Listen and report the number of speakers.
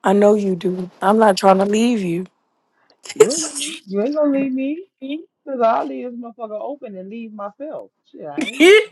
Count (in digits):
2